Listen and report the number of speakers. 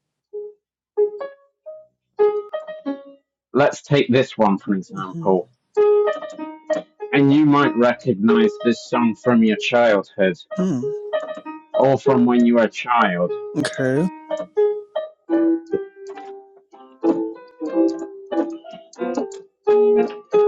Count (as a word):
two